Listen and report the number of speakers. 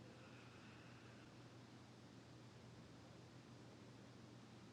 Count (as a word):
zero